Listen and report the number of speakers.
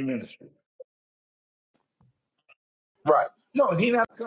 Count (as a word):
one